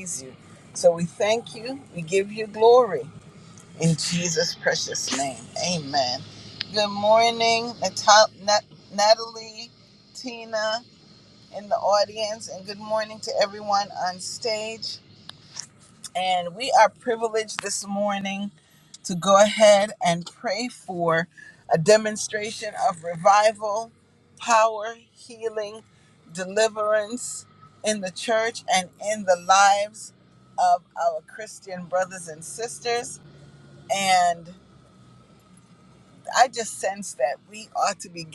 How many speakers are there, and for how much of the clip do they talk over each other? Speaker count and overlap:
one, no overlap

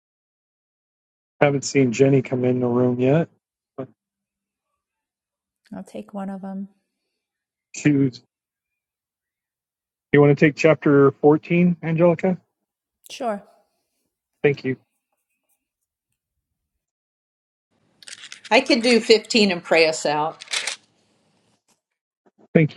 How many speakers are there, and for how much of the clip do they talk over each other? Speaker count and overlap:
three, no overlap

